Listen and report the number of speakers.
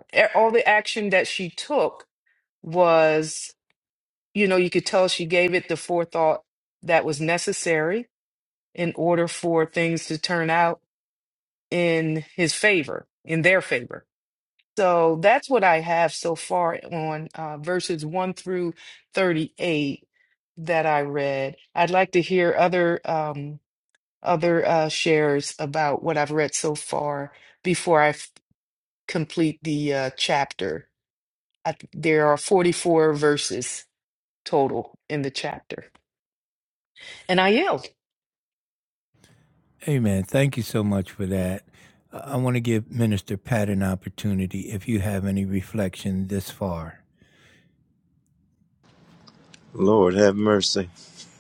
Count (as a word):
three